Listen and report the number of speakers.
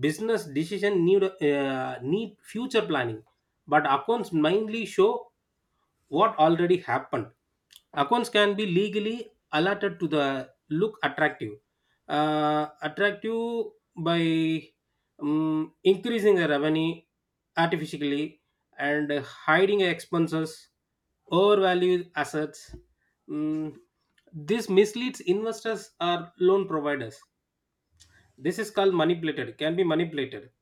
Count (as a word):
one